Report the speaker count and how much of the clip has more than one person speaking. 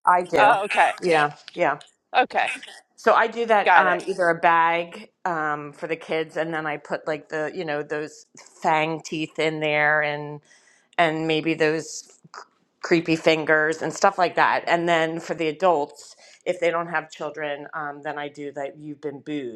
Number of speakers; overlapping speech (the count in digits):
2, about 3%